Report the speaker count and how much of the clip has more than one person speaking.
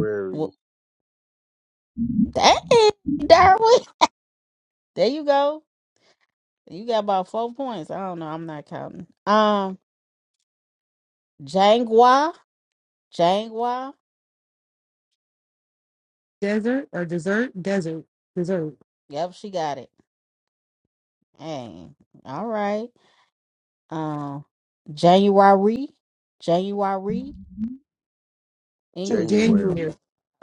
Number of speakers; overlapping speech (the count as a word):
three, about 3%